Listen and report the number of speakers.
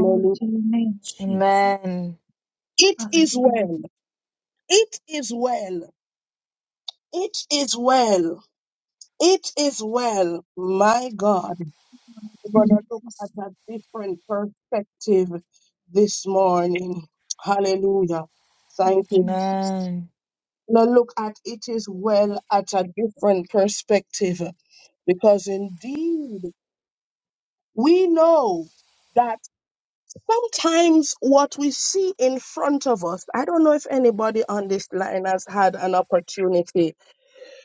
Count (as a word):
three